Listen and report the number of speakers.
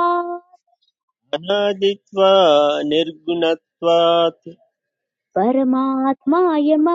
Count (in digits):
2